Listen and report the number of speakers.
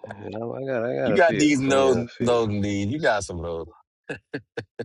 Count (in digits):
2